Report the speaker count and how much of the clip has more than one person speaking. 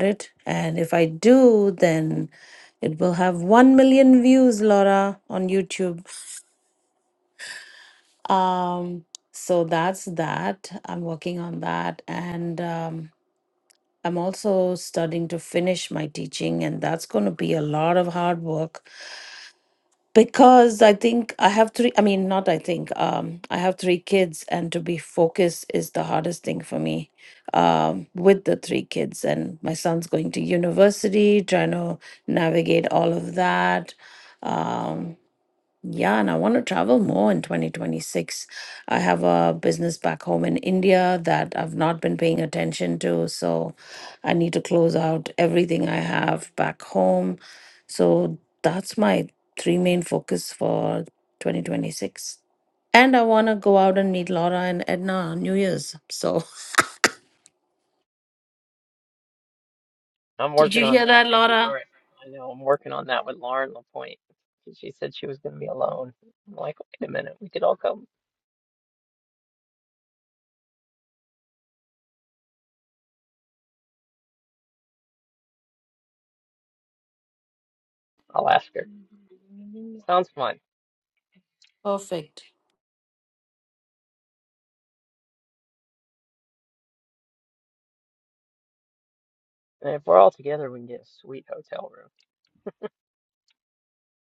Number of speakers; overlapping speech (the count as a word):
two, about 1%